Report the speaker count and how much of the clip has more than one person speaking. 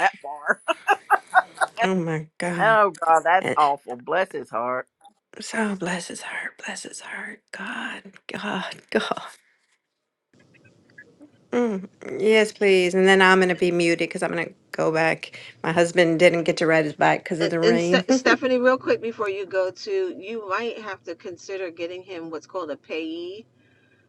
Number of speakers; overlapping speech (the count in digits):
3, about 5%